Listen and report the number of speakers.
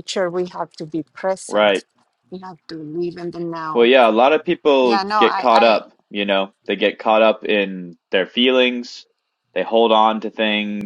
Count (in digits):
2